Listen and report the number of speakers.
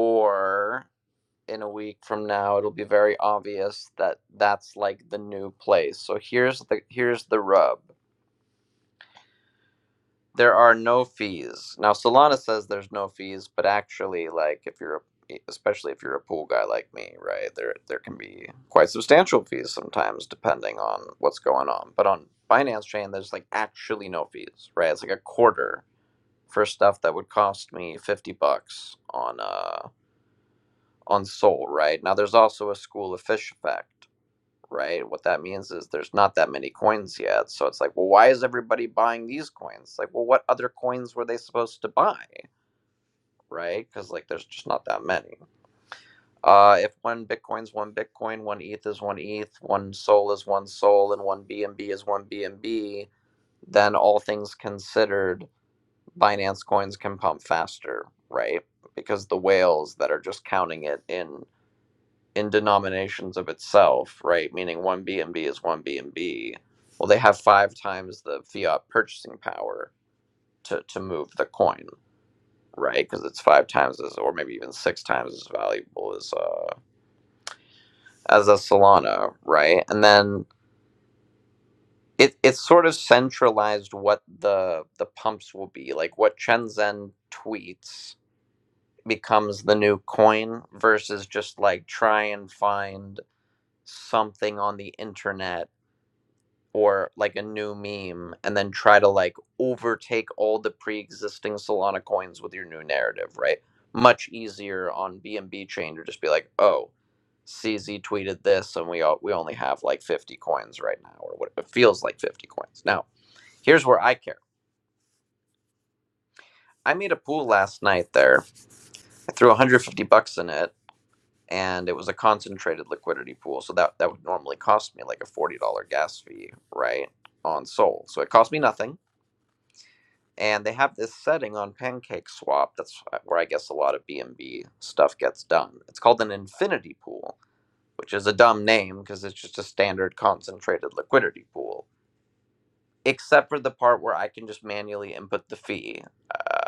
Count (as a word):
one